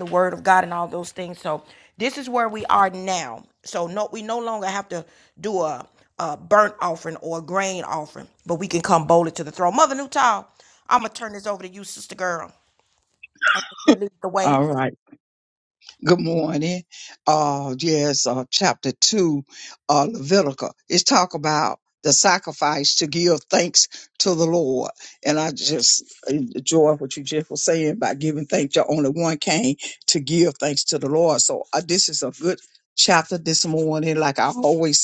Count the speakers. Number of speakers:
two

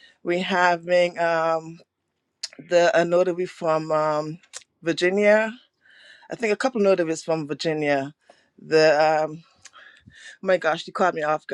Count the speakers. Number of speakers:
one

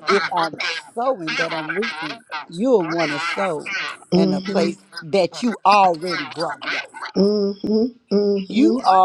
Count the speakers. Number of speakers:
two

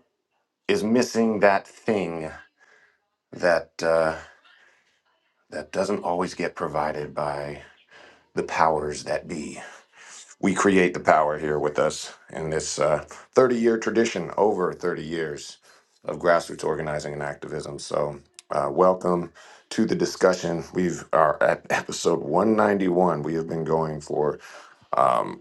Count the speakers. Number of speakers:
one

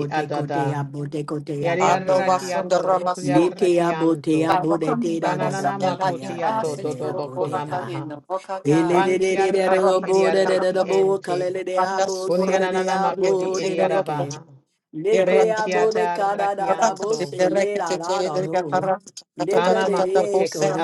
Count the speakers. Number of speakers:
three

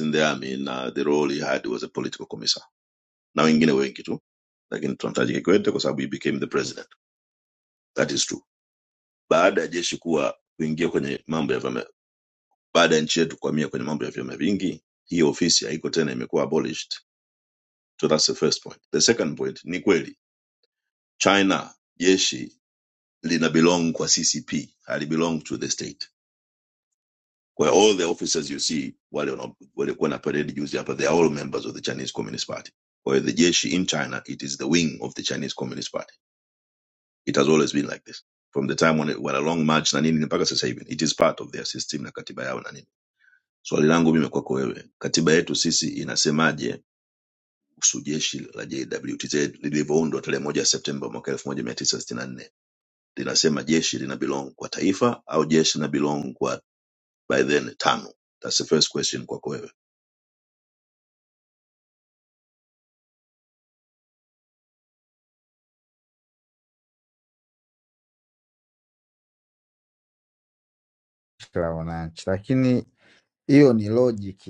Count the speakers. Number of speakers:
two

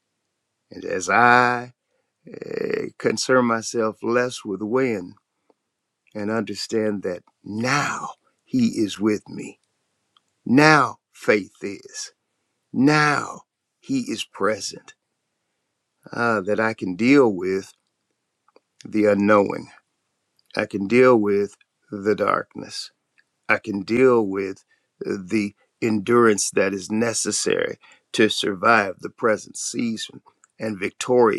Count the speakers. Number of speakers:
one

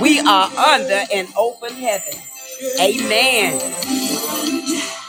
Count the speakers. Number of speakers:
one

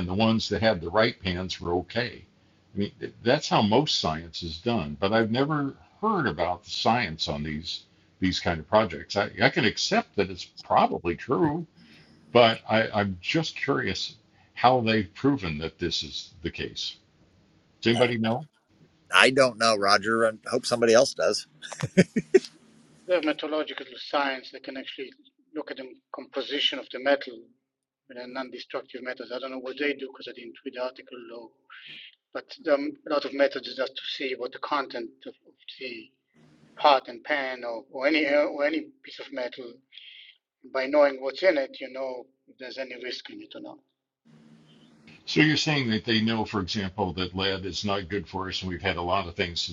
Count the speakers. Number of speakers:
three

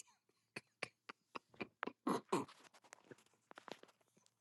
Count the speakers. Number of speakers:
zero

